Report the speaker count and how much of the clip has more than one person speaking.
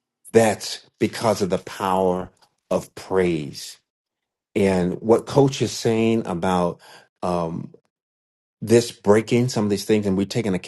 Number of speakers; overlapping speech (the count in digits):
1, no overlap